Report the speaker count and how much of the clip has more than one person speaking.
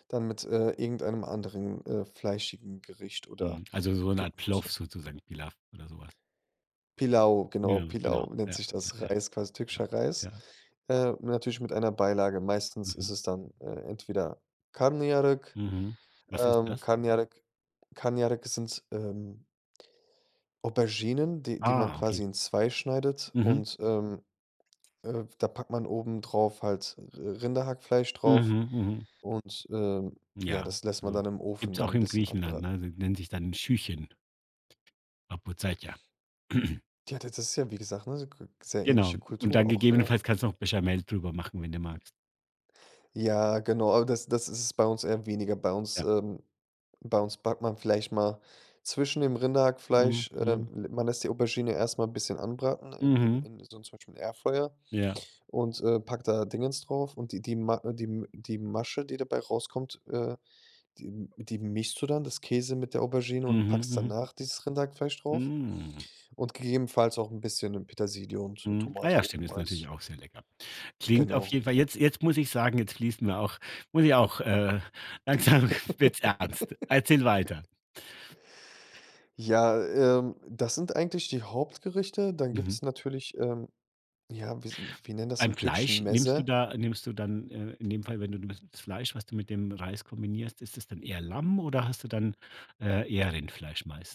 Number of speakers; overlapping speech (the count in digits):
2, about 12%